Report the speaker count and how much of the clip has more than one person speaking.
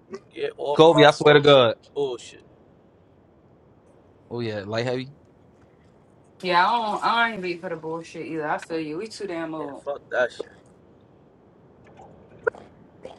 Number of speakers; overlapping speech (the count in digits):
3, about 8%